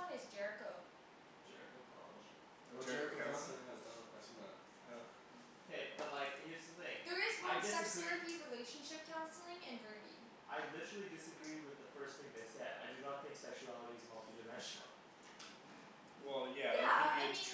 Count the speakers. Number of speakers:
four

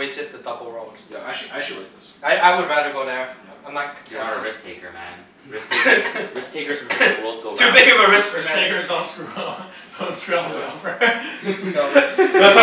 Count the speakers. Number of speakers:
four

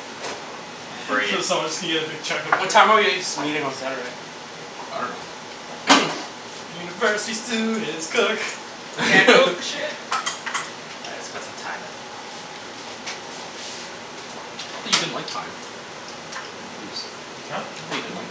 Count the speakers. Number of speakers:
four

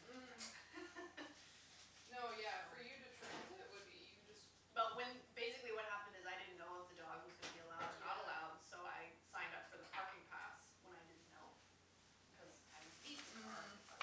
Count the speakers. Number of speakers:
two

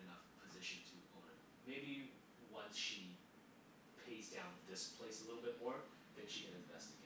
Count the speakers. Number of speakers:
one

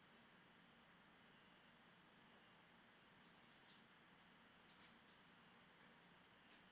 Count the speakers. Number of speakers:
zero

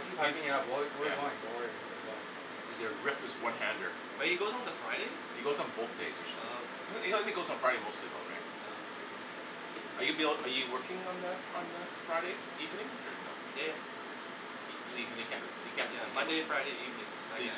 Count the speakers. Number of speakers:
three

